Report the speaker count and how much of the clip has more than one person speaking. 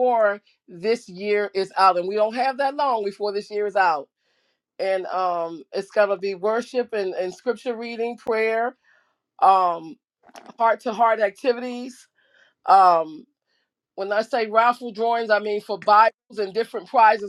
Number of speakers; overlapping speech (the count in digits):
1, no overlap